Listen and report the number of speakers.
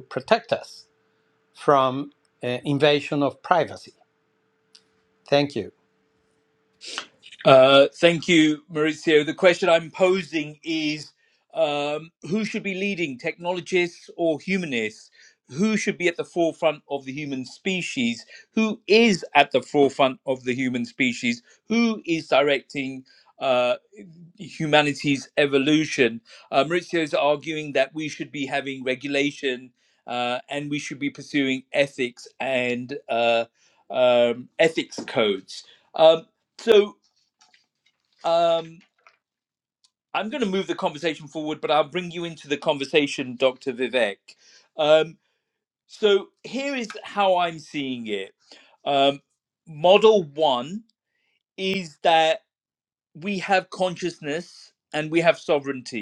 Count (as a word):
two